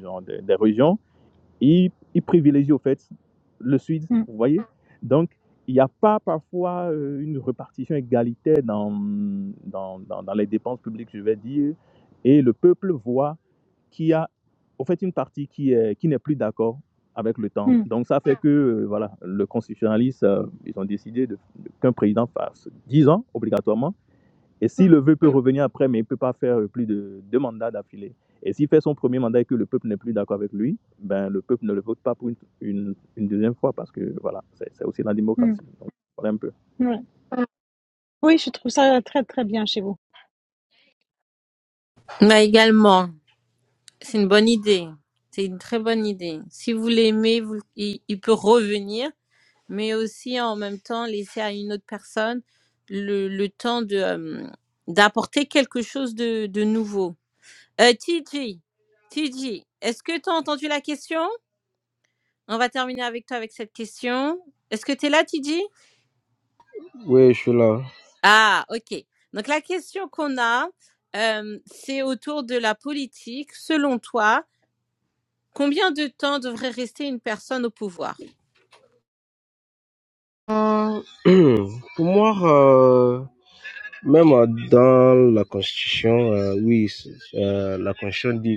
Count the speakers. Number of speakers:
four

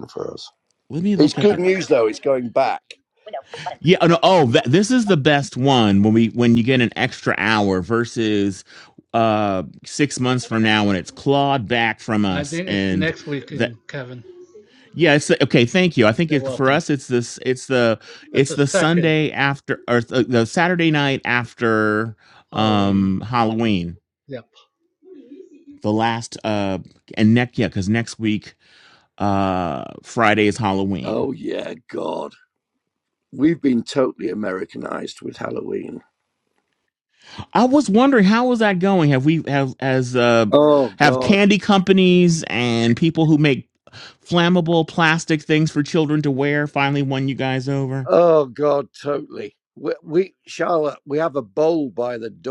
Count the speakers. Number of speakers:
three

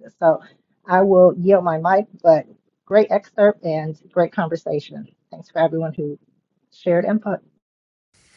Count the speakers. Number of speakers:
one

